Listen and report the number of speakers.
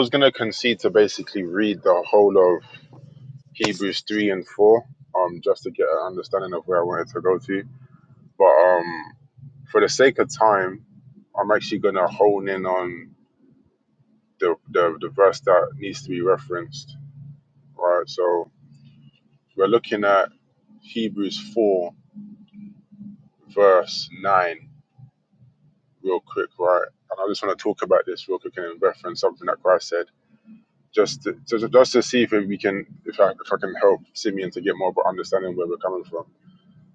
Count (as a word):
one